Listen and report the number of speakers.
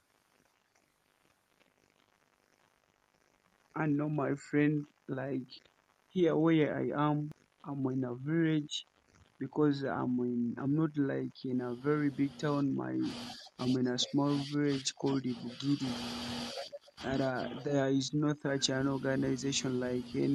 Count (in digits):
1